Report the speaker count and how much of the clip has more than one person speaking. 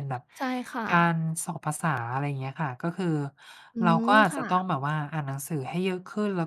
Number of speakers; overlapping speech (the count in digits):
2, about 16%